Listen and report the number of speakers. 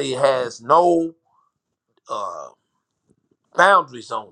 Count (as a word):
one